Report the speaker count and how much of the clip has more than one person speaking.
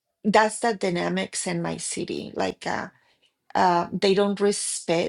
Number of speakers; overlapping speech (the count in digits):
1, no overlap